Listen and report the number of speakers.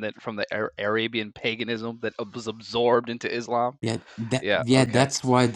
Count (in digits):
2